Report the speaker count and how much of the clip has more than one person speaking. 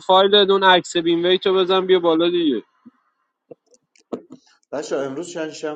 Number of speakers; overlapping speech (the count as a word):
two, no overlap